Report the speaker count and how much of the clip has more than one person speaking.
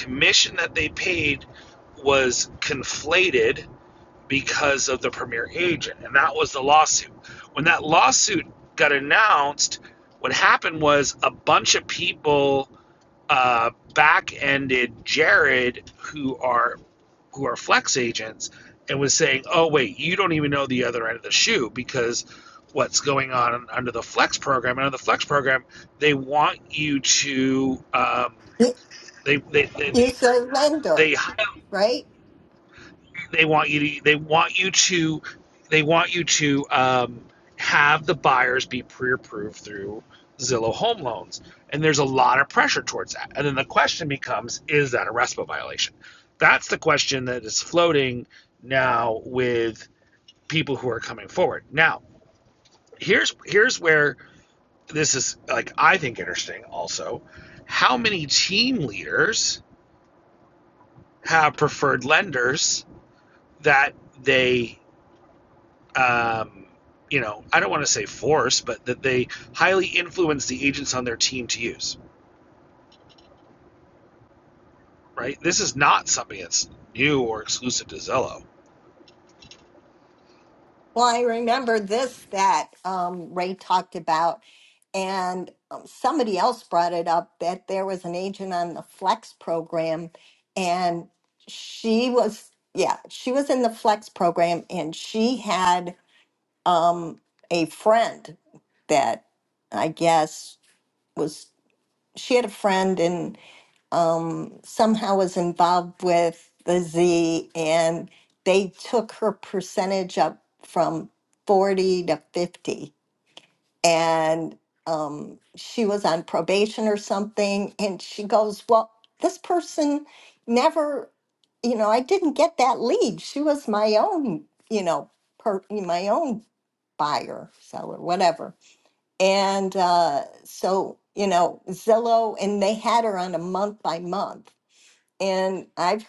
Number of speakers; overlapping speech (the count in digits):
2, under 1%